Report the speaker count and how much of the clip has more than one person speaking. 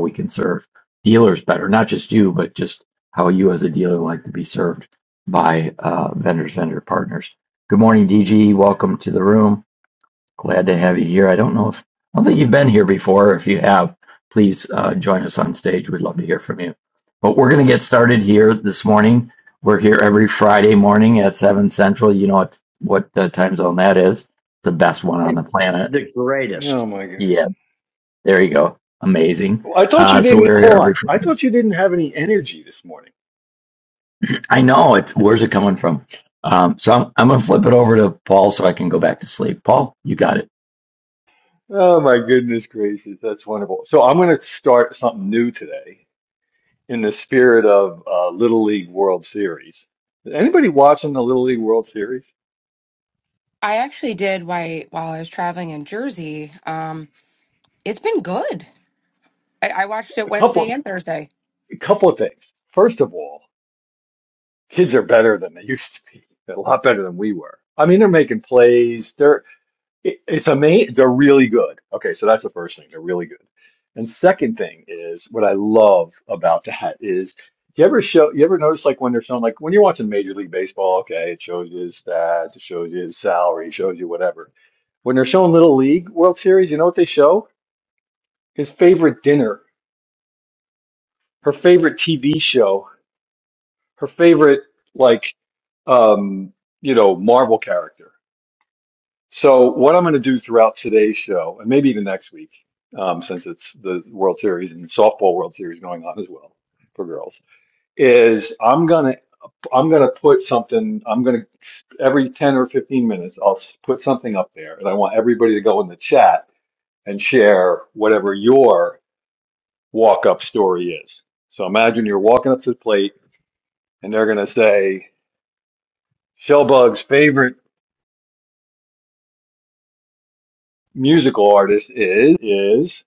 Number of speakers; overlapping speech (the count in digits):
4, about 2%